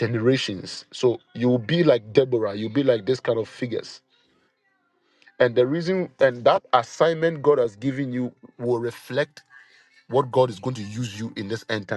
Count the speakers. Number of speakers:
1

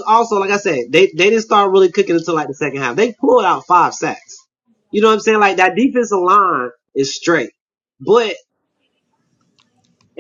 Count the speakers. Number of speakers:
1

